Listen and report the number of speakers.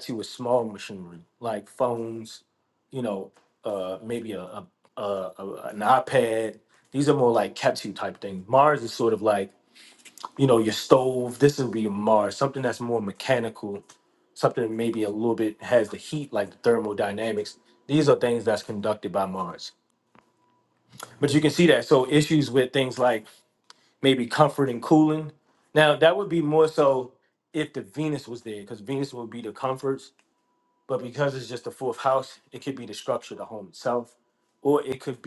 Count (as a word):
one